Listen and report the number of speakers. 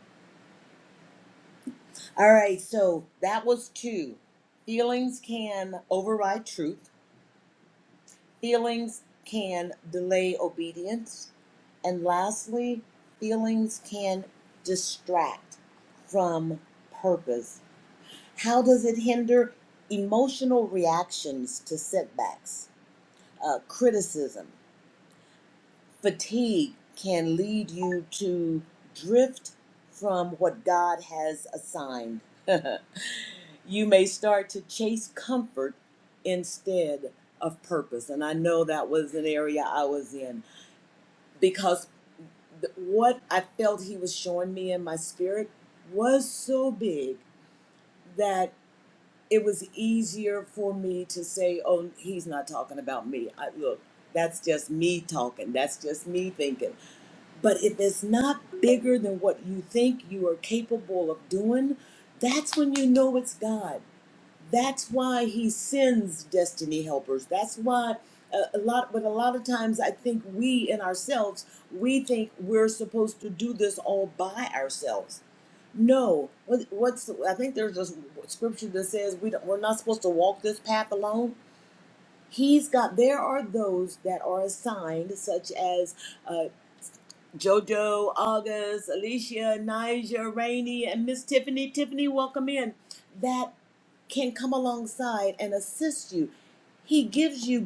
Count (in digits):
1